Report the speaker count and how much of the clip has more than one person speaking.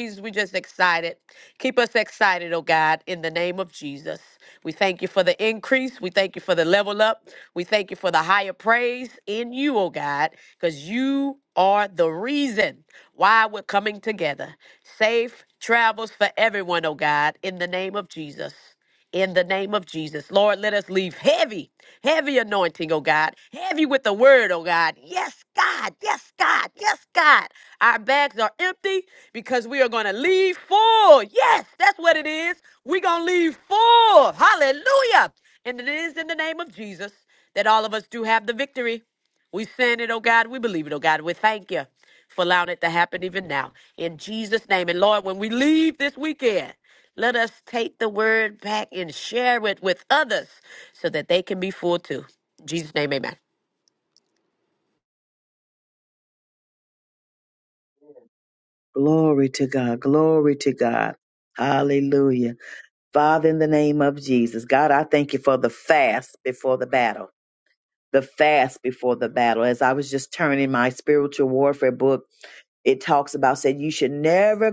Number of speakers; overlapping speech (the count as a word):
two, no overlap